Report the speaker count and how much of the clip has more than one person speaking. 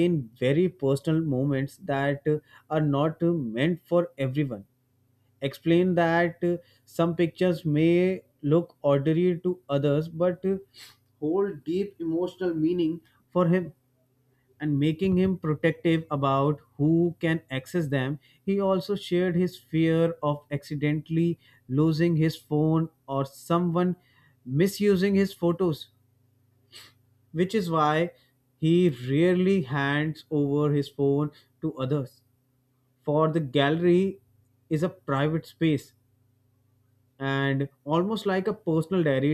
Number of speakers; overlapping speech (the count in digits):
1, no overlap